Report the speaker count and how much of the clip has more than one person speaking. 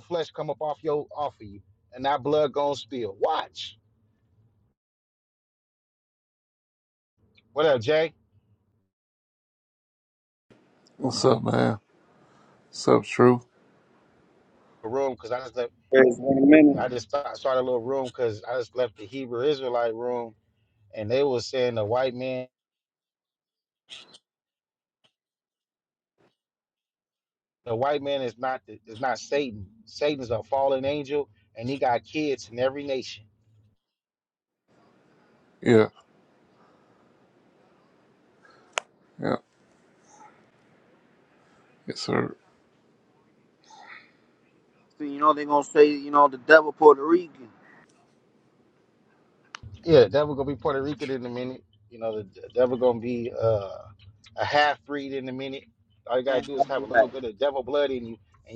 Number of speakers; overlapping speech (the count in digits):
3, about 2%